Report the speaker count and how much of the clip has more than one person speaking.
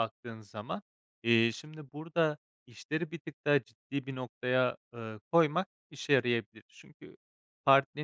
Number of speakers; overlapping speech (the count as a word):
one, no overlap